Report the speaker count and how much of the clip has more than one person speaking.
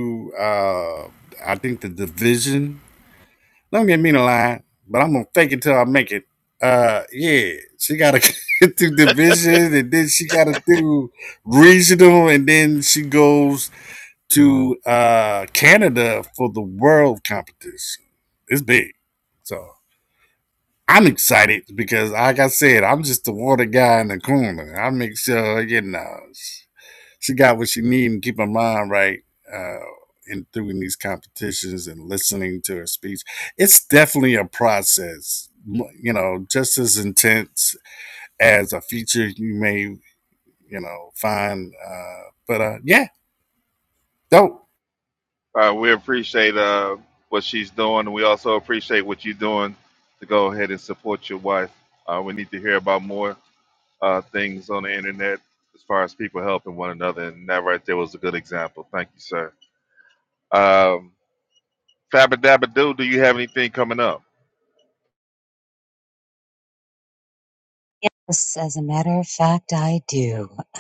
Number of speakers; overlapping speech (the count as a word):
three, no overlap